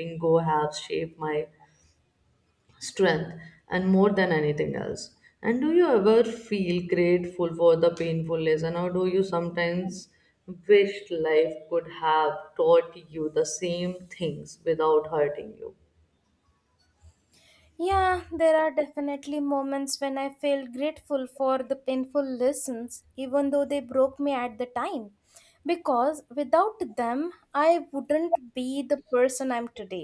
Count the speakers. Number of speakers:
2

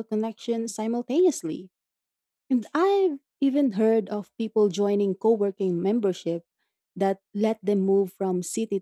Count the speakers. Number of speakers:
1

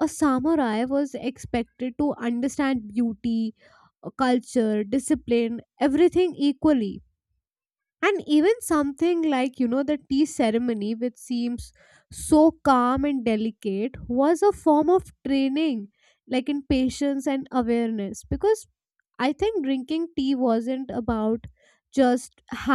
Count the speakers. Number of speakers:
1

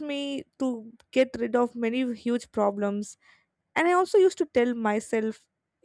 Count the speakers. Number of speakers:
1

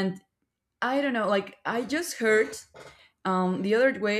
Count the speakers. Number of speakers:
1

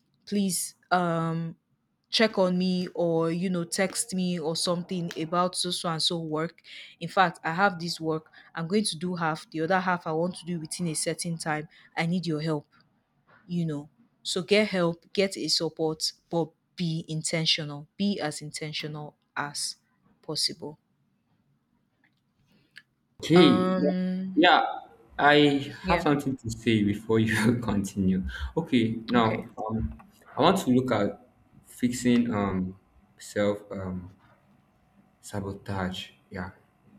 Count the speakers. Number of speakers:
2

